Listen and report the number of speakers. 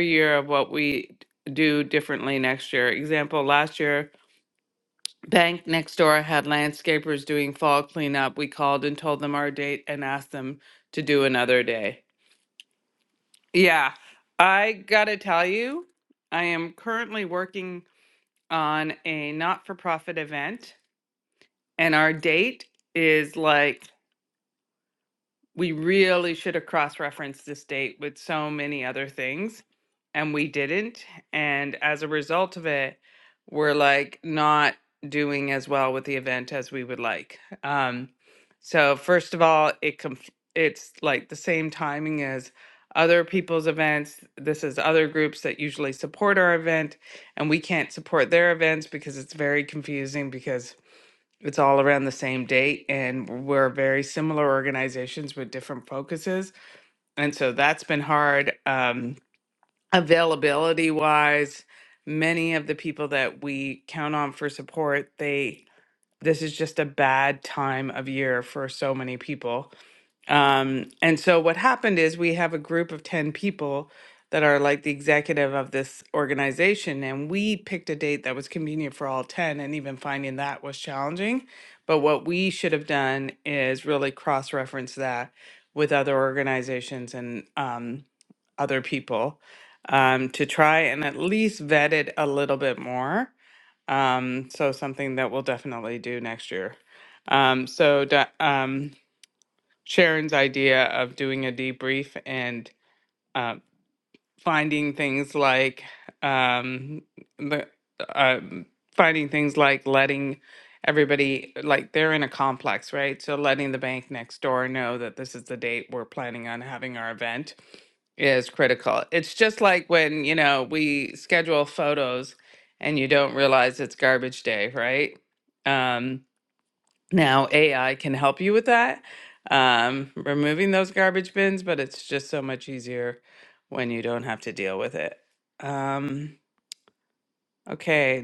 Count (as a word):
one